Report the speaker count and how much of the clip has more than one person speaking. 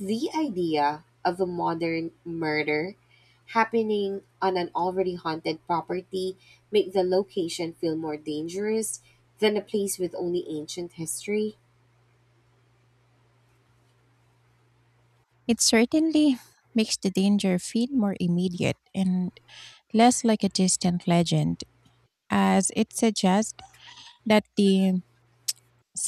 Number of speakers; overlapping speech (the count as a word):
two, no overlap